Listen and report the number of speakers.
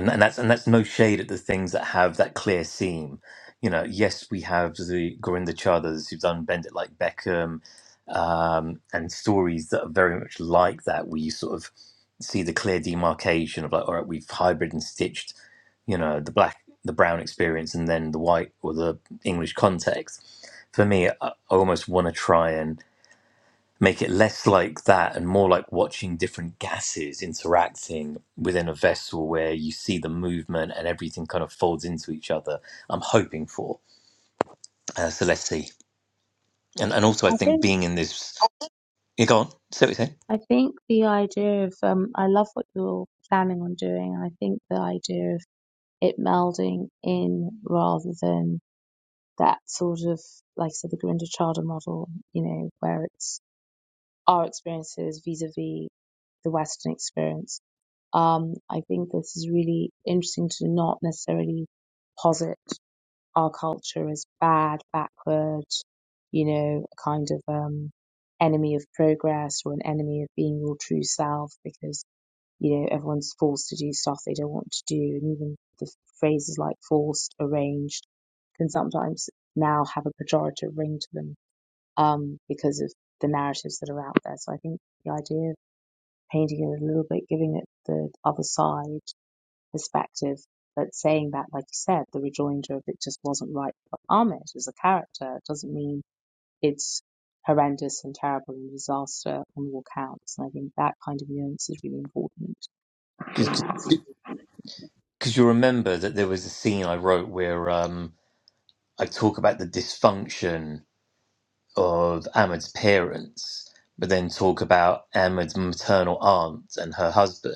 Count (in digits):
2